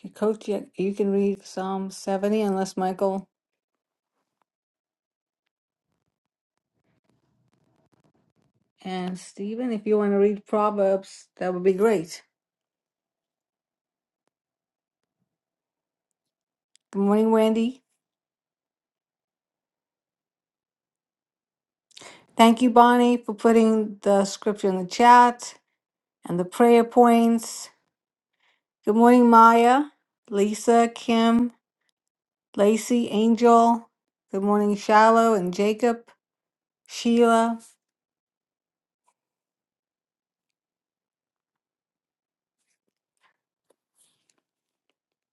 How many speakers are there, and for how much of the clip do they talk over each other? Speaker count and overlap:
1, no overlap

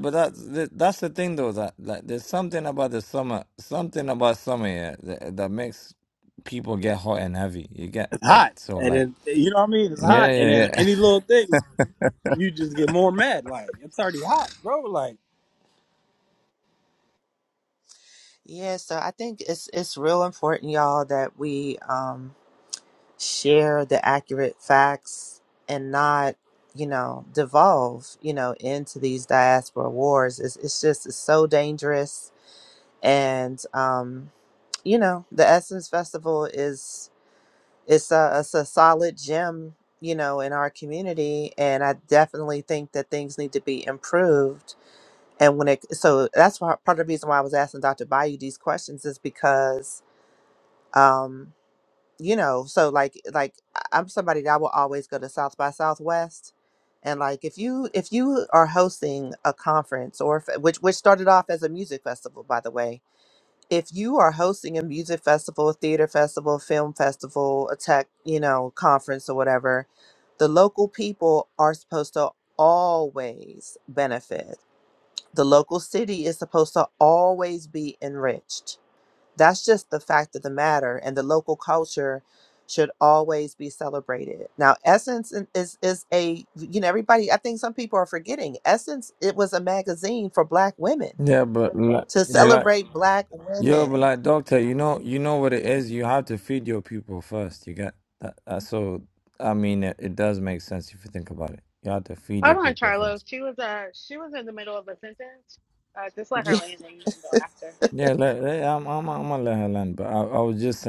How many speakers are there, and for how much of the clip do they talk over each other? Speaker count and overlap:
4, about 3%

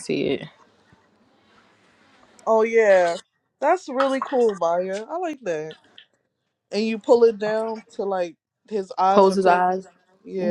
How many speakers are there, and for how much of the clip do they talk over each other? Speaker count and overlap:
2, about 6%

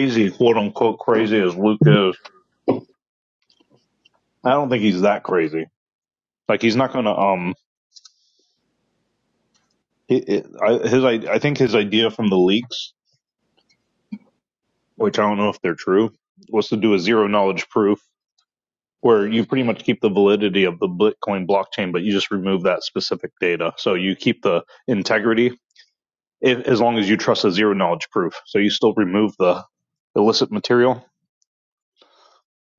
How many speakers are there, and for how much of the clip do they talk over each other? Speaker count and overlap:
1, no overlap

